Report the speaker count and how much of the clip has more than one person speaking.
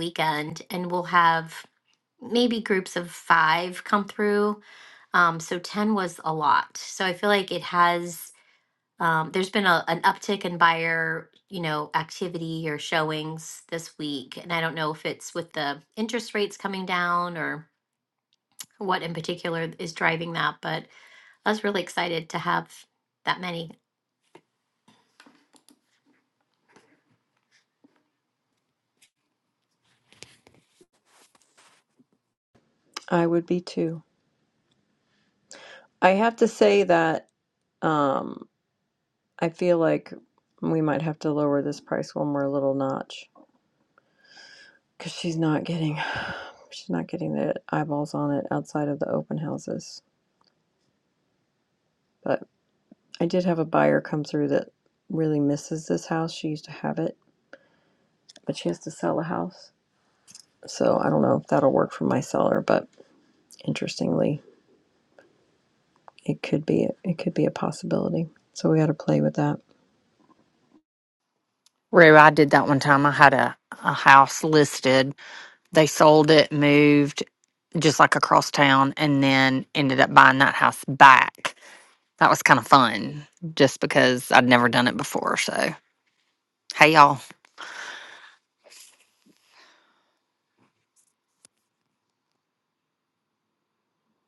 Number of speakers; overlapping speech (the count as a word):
three, no overlap